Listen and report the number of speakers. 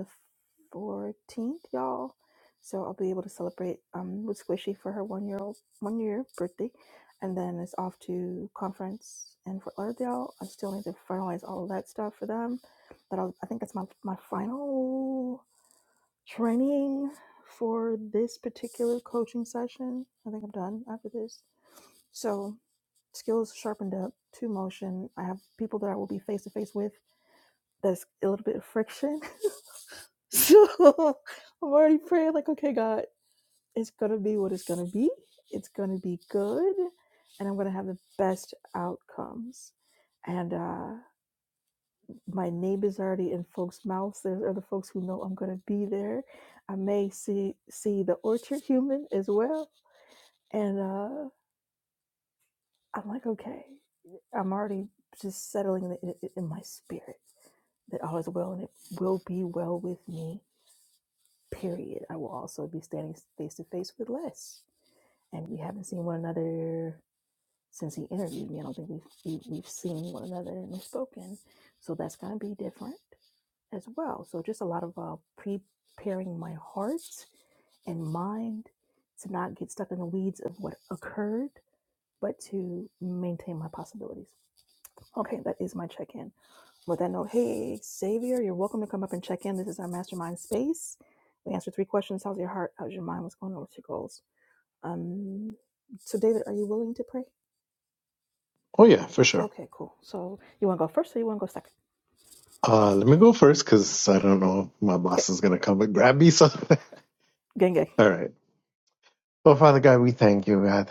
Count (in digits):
2